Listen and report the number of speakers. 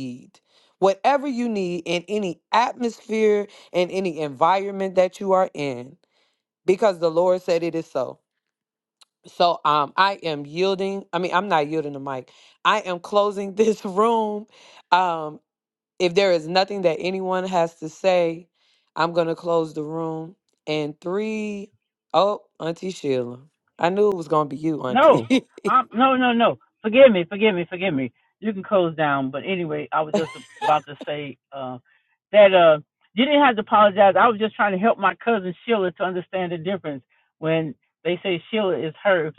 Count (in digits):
2